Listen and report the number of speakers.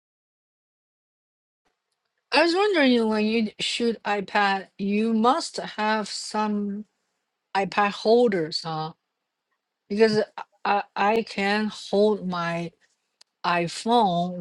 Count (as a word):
one